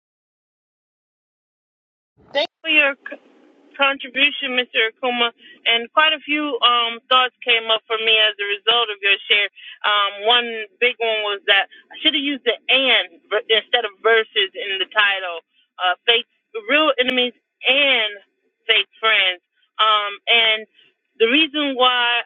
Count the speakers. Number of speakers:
one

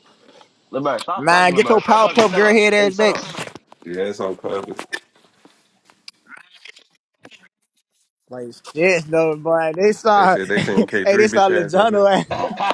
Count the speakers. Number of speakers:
three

